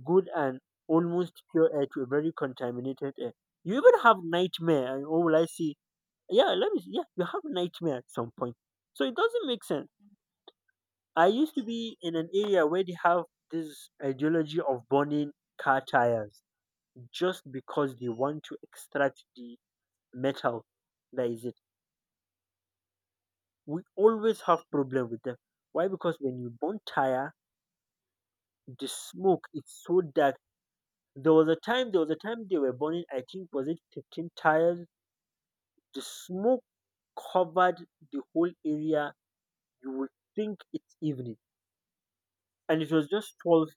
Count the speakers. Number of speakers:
one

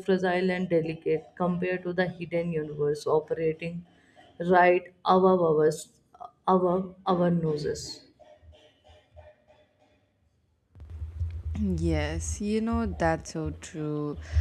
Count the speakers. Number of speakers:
two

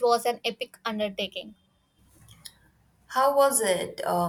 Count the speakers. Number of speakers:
two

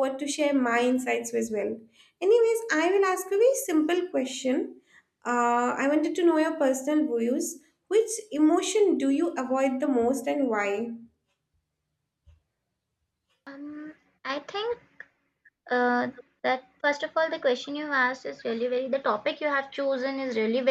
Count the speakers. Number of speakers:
two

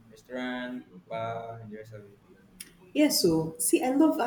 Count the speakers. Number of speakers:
two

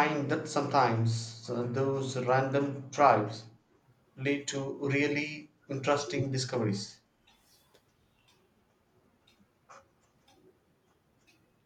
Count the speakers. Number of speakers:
one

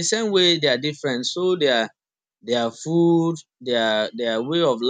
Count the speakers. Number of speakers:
one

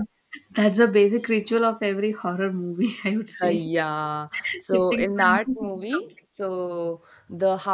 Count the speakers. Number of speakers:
two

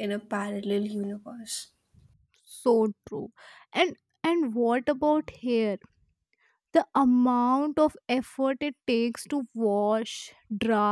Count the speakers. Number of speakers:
two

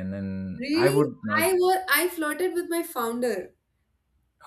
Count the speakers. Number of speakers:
two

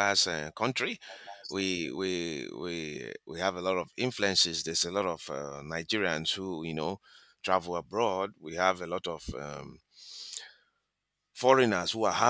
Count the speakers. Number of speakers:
one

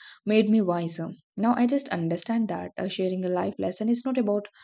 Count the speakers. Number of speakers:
one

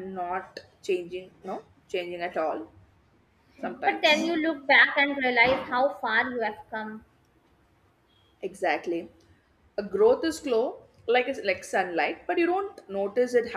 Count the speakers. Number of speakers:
two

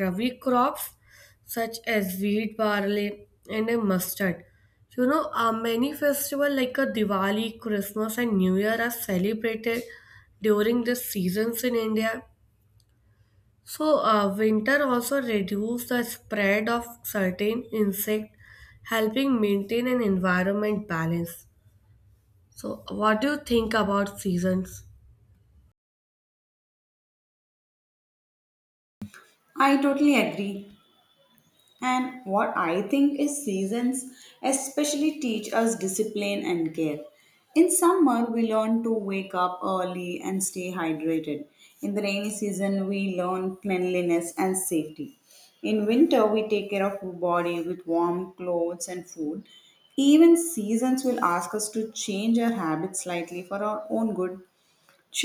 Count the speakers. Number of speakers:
two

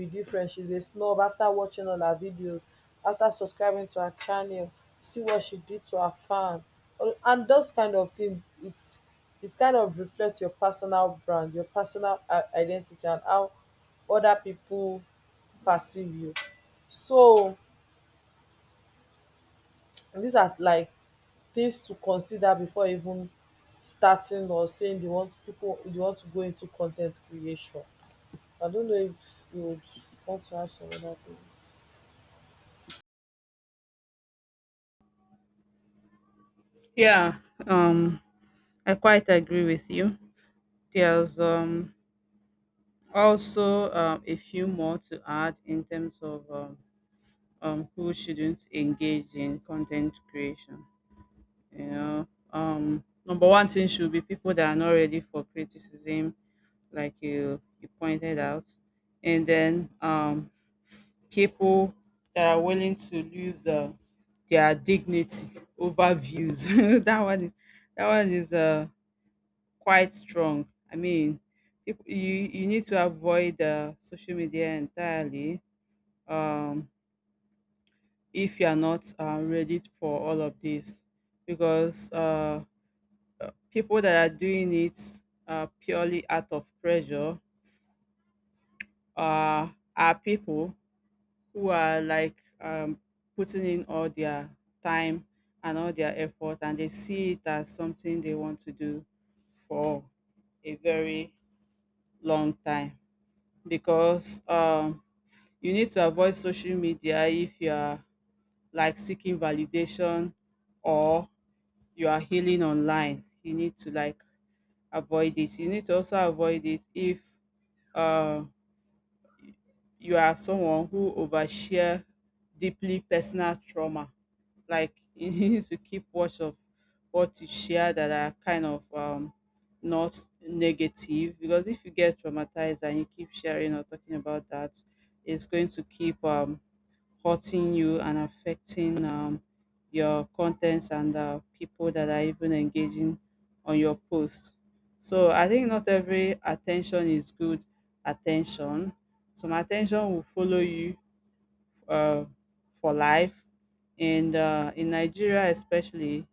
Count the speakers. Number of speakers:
two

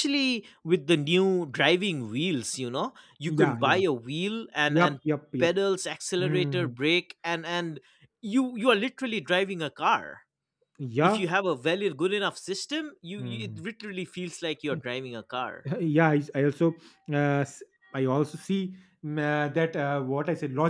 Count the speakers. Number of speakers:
two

